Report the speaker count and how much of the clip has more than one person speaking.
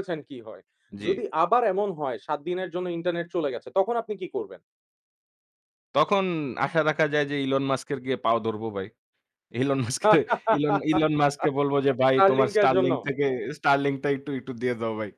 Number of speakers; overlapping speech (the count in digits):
2, about 6%